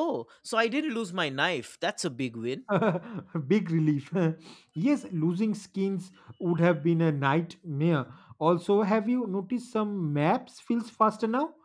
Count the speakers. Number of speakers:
2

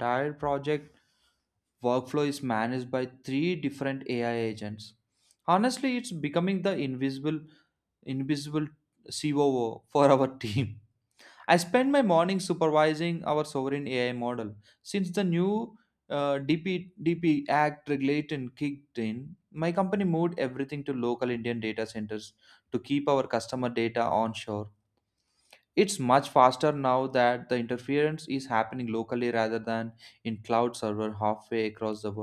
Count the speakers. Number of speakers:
1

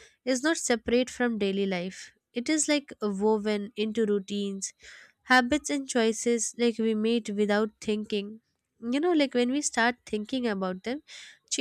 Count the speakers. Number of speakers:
1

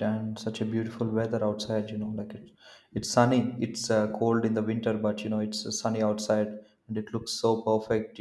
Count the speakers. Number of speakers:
1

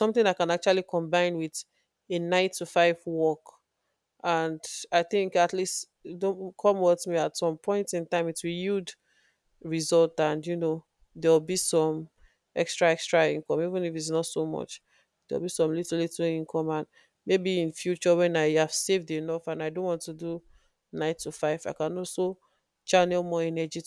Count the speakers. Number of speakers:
1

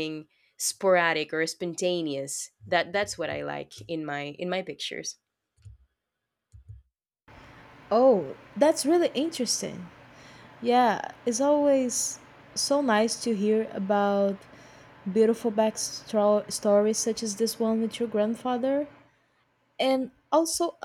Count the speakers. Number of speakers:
2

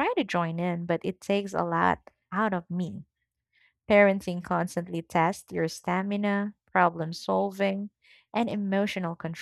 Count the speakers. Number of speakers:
1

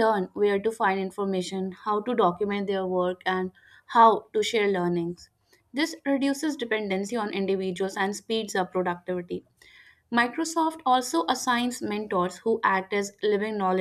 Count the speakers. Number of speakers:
1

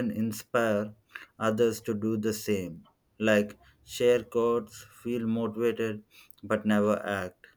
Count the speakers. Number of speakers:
1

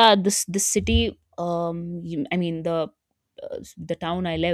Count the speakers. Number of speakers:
1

